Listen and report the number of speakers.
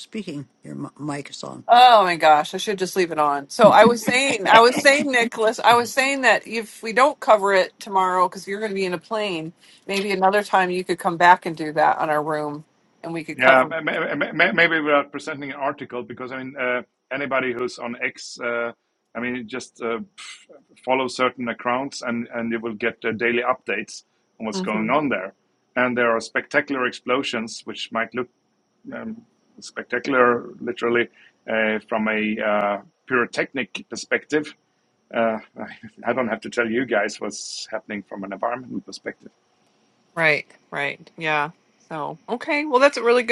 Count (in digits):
3